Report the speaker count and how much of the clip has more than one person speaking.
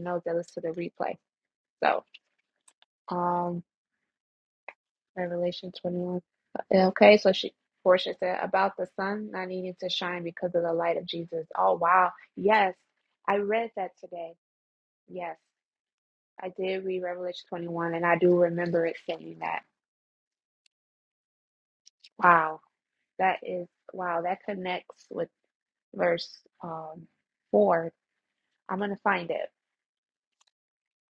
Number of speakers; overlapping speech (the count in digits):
1, no overlap